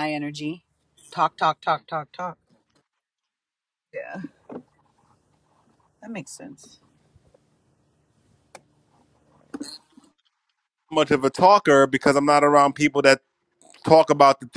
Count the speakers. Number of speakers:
two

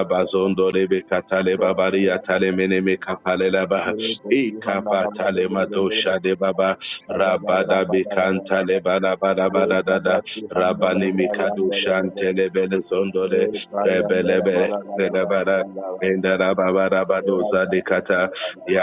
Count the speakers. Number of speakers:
two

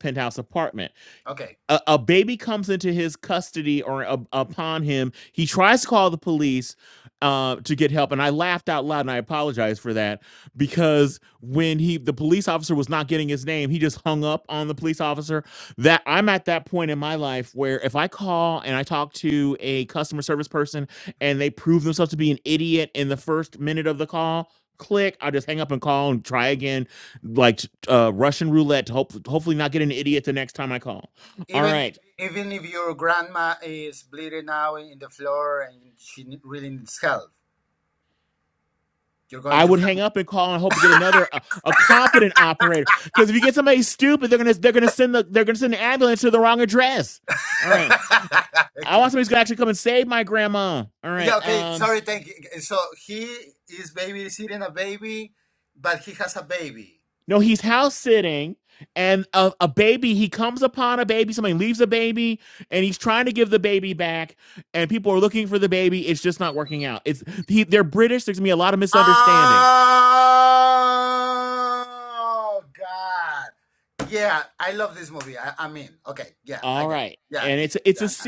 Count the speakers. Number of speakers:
two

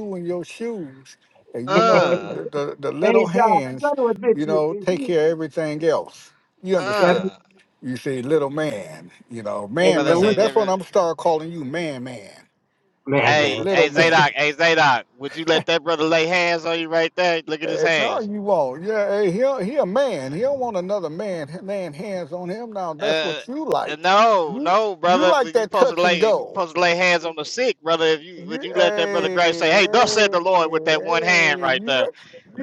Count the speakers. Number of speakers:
three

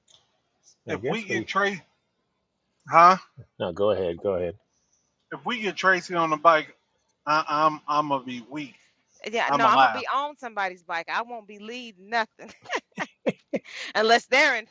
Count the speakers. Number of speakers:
three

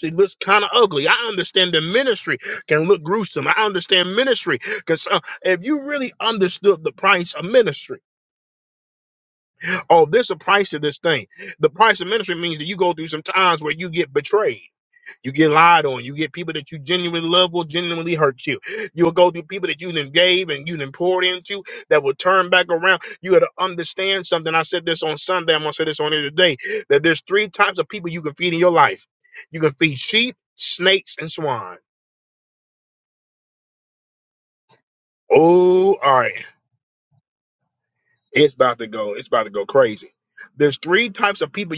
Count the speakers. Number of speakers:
one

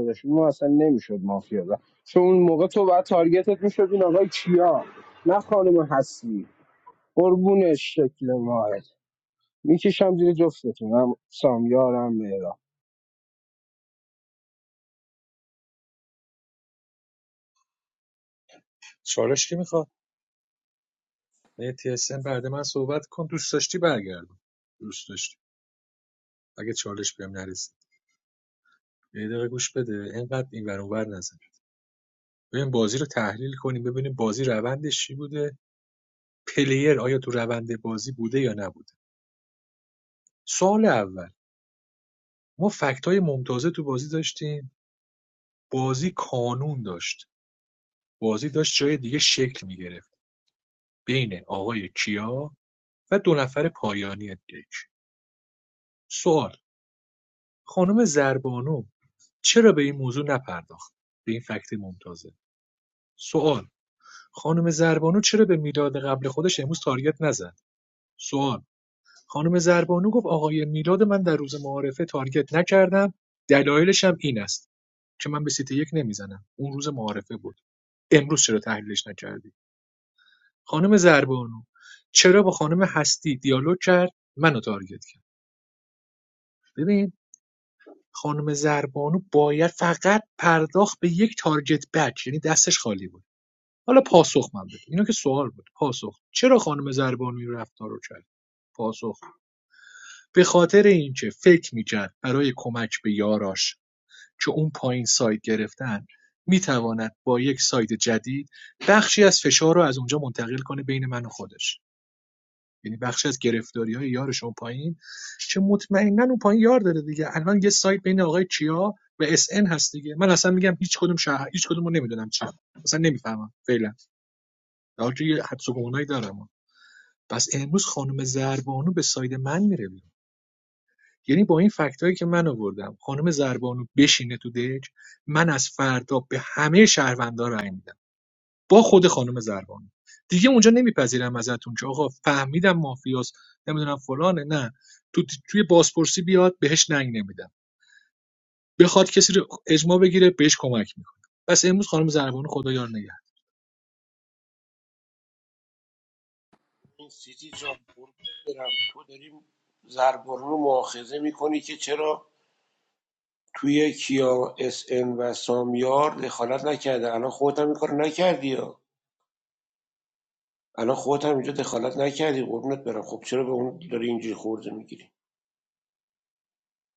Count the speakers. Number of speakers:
three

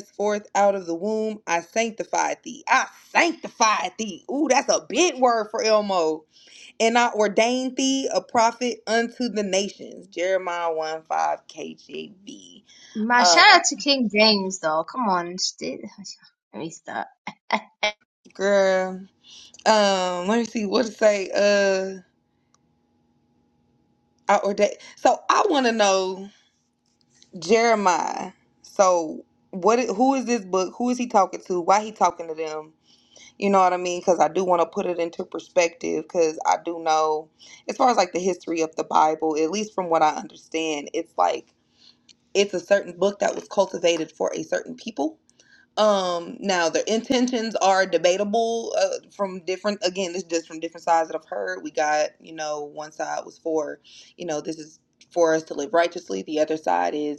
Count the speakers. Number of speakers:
two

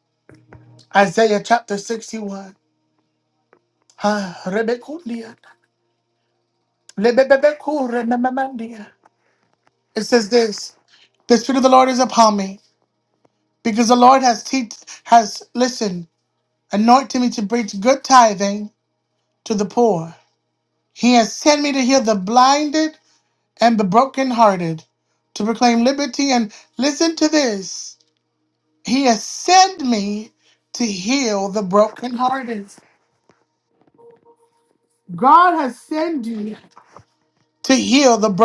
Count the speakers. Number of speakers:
one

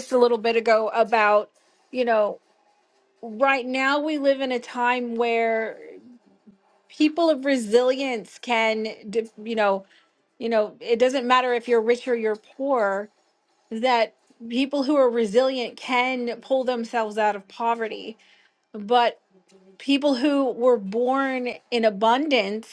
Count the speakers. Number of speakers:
one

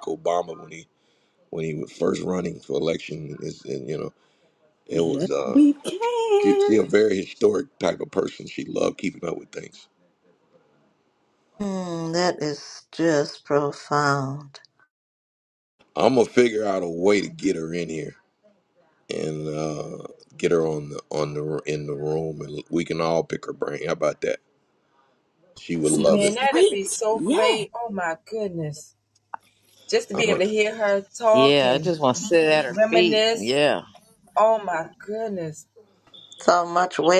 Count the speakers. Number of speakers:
five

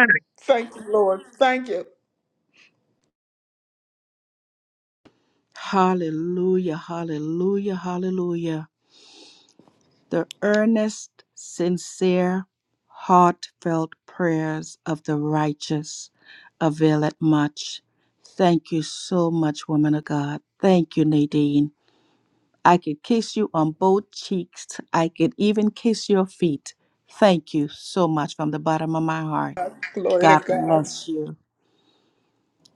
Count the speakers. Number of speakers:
two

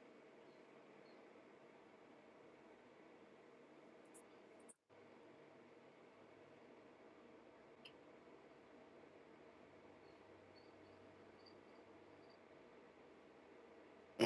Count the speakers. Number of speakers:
zero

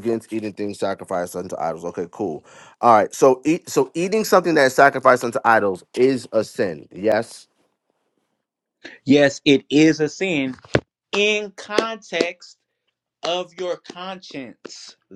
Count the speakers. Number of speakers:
two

